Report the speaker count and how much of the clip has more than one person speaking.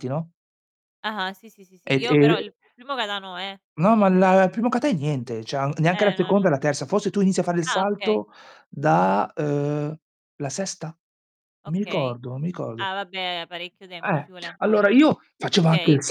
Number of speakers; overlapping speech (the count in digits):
2, about 20%